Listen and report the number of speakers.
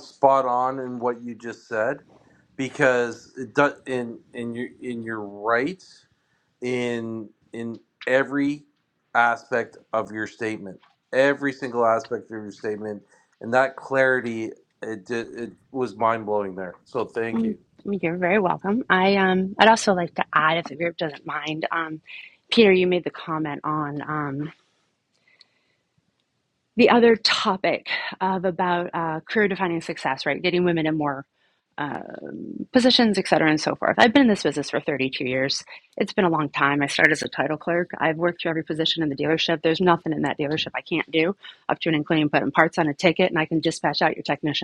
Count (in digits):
2